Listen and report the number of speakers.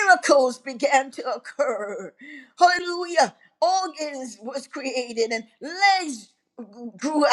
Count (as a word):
one